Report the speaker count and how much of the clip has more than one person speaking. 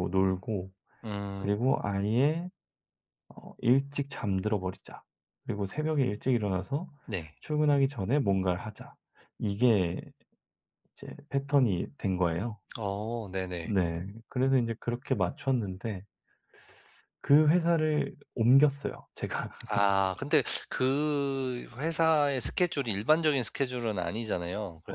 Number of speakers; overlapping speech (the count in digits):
2, about 1%